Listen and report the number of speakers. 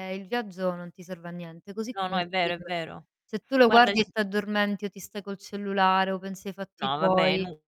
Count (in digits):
2